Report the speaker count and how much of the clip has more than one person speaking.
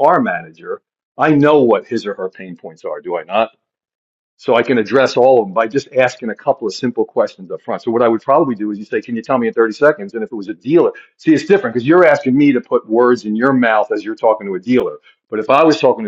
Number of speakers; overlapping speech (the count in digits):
1, no overlap